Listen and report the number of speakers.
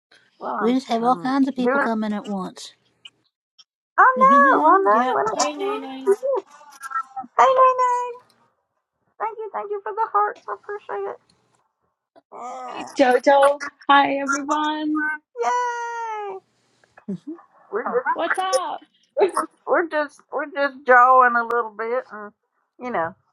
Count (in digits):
4